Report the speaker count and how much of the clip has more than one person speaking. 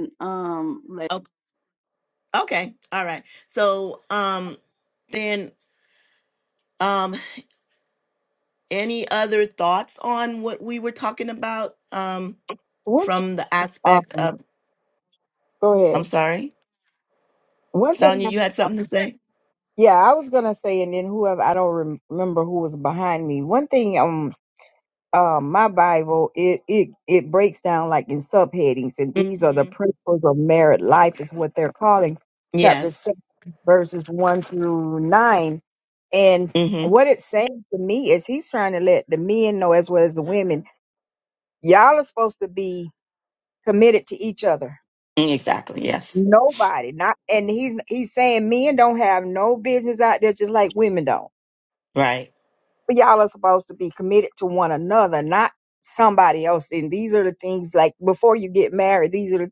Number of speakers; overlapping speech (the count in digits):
3, about 3%